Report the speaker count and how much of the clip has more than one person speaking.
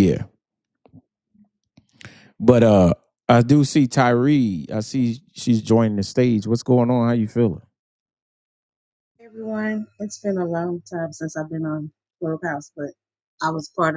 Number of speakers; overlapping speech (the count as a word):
two, no overlap